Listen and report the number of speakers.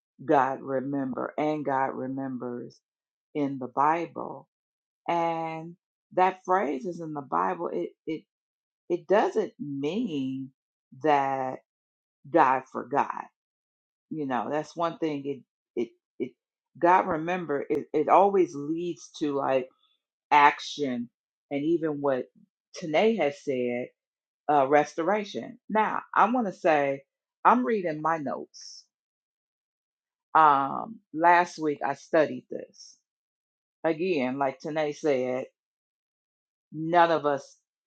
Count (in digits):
1